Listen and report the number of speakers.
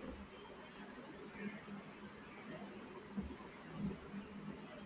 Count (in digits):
0